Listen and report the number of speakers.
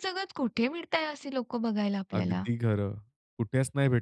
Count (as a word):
two